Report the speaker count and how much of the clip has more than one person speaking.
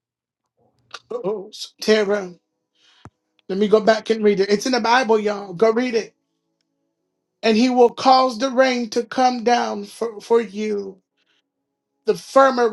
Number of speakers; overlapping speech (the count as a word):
one, no overlap